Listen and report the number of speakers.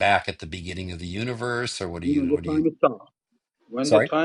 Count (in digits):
2